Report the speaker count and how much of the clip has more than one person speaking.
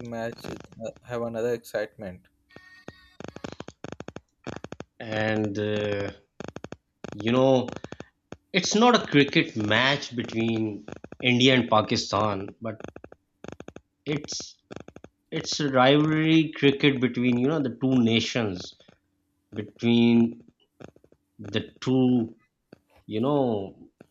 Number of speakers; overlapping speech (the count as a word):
two, no overlap